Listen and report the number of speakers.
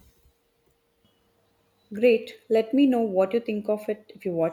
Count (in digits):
1